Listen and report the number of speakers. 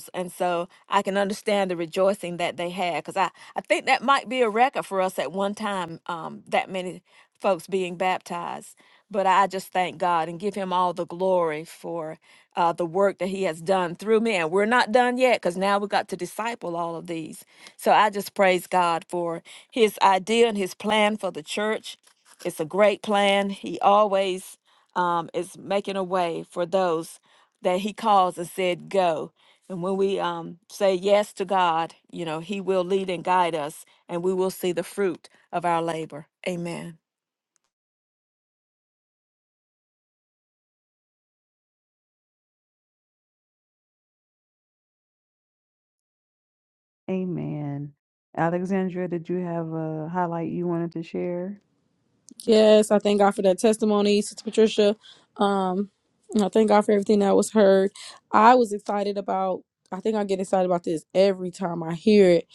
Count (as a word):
three